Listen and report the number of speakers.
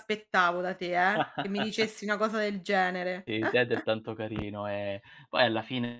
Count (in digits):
2